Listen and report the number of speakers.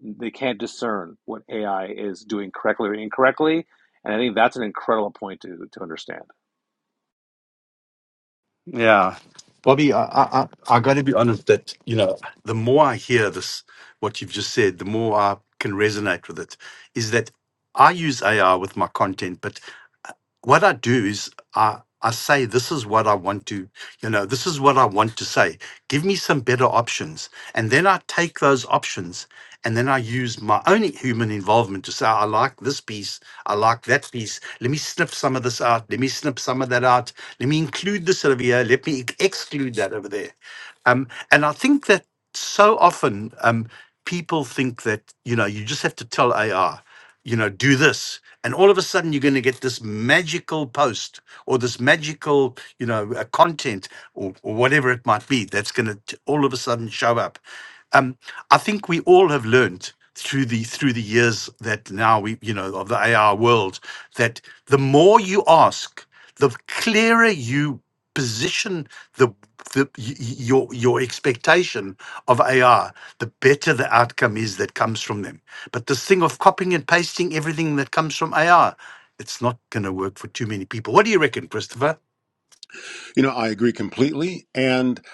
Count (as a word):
three